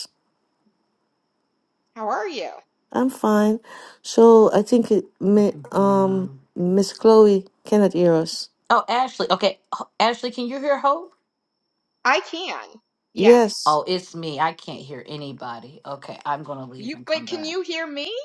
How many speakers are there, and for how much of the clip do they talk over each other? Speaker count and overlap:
3, about 11%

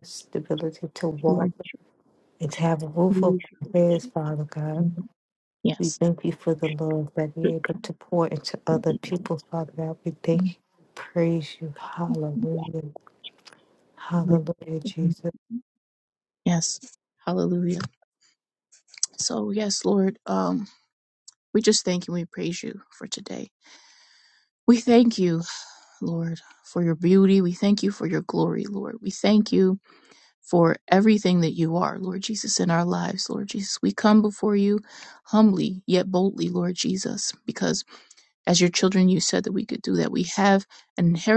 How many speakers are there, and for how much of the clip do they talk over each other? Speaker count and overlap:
2, about 4%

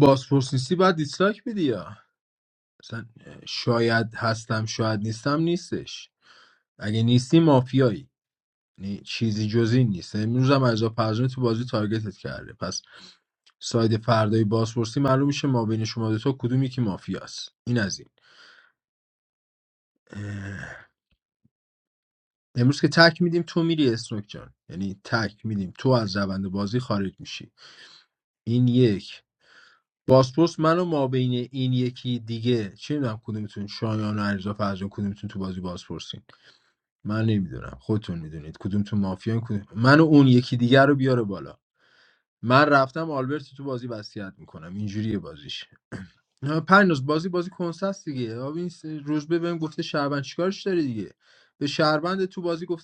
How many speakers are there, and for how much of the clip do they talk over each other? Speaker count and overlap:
1, no overlap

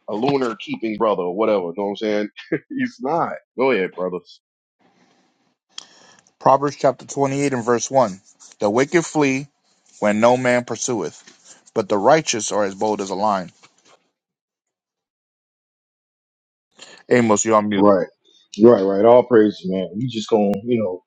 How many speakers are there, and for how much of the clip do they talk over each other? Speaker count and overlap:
3, under 1%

